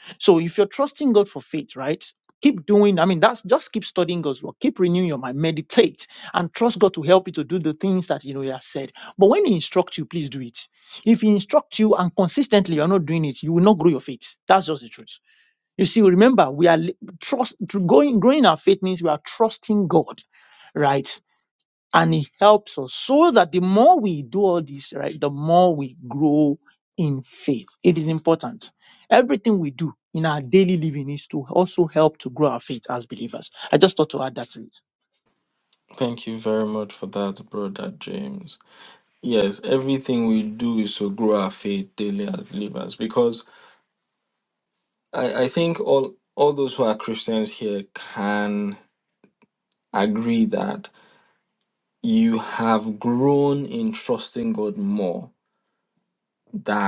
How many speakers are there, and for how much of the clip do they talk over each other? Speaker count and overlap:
2, no overlap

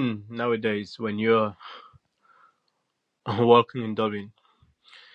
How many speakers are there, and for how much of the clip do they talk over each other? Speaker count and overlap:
1, no overlap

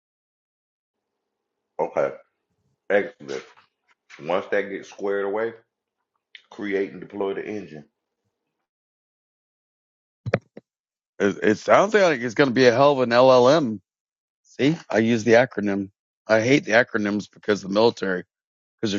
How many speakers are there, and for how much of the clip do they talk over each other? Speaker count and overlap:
2, no overlap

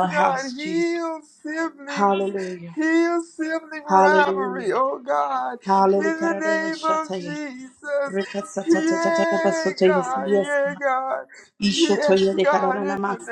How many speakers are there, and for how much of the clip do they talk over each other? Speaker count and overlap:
2, about 55%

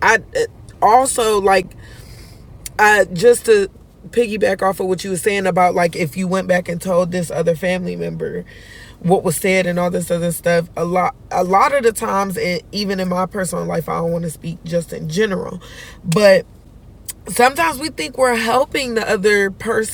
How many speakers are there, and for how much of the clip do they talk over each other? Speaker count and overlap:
1, no overlap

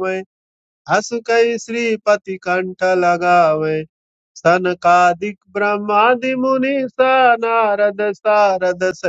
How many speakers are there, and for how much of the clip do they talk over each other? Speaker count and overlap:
1, no overlap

